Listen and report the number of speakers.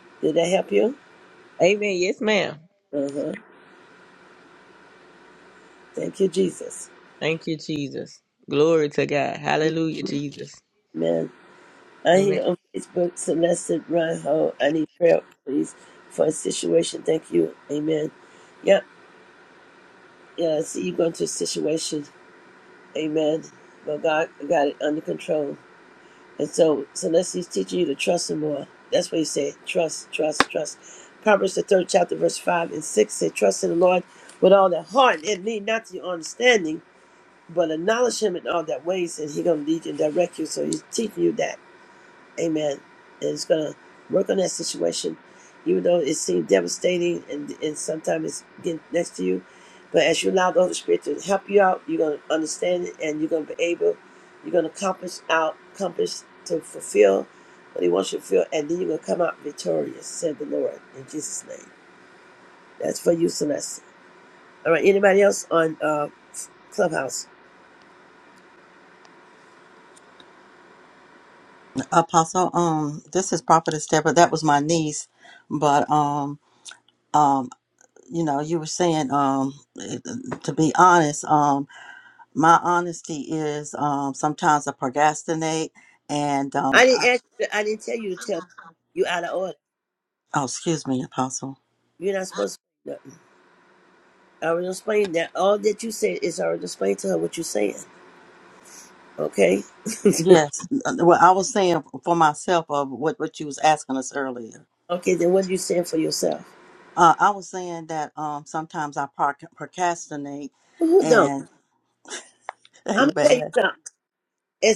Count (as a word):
three